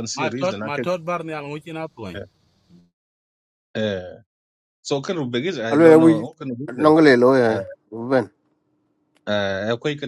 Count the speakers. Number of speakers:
3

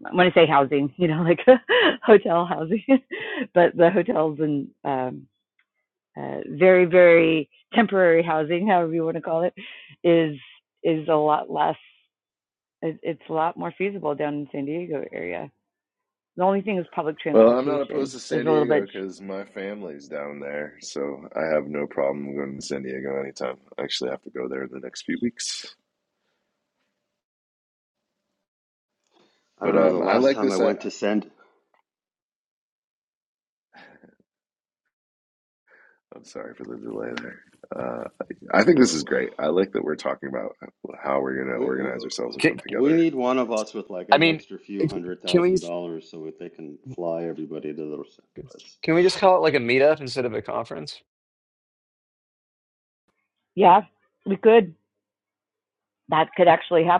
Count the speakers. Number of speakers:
4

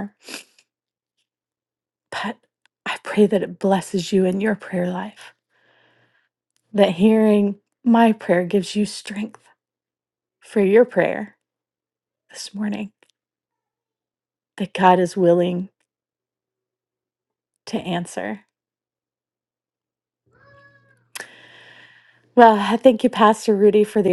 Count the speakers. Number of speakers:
1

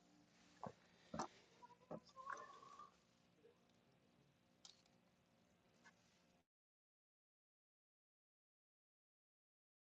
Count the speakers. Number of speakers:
0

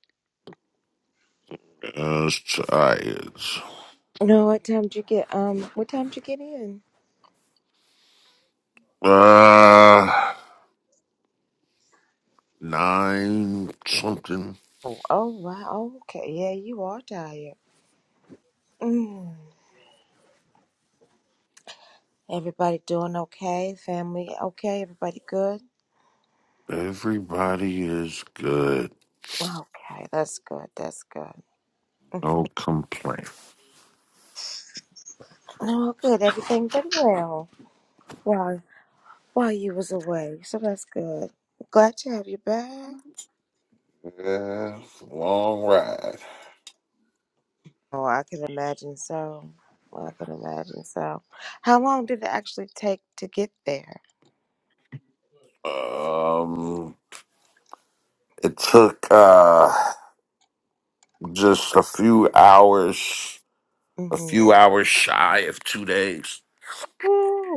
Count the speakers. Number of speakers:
2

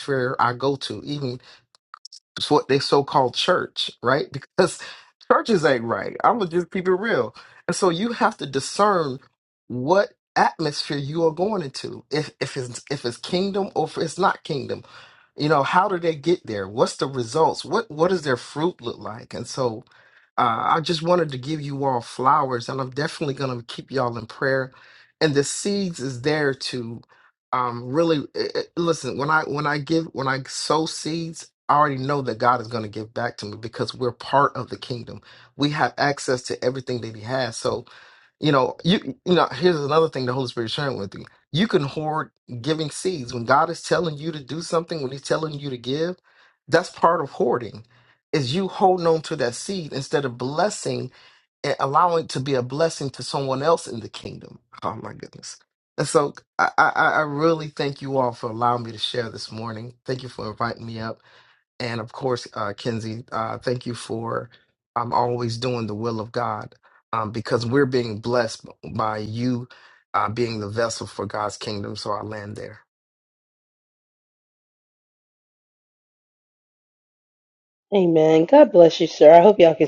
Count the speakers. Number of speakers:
2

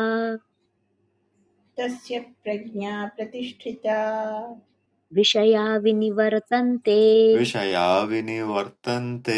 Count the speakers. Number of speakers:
3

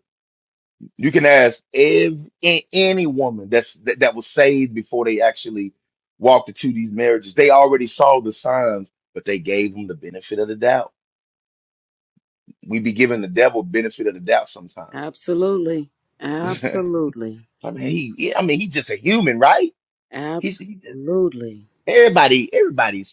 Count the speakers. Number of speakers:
2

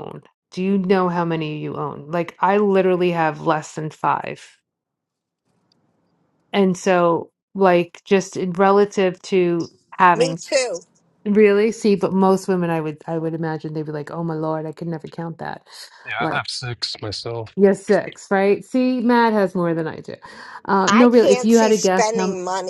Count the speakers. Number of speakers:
3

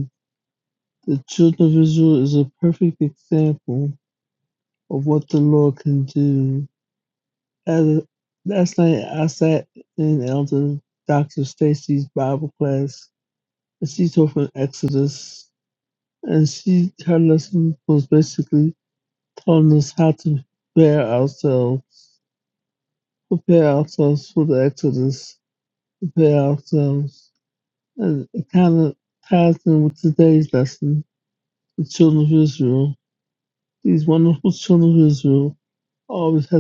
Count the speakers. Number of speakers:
1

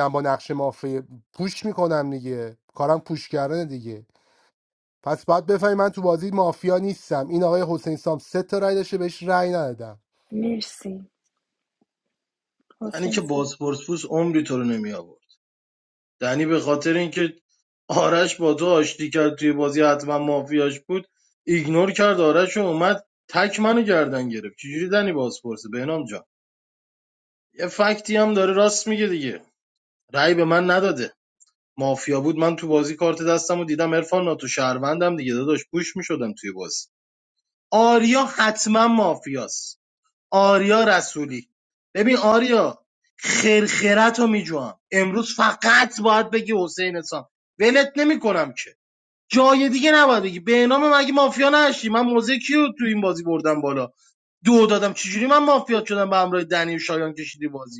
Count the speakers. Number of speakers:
3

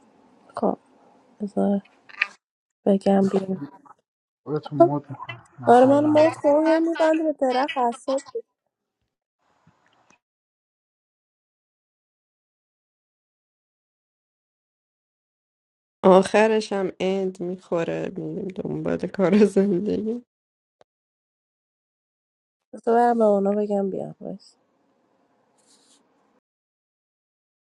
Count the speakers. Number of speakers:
3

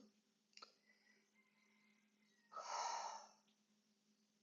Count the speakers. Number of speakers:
0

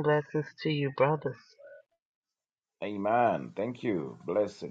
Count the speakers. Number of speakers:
2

